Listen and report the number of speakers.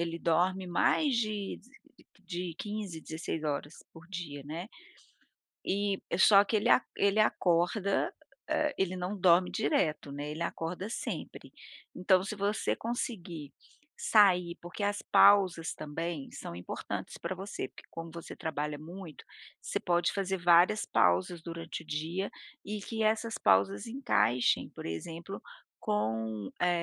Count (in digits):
1